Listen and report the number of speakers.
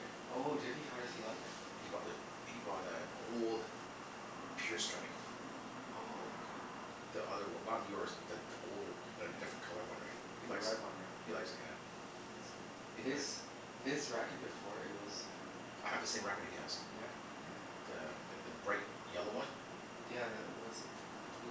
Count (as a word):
two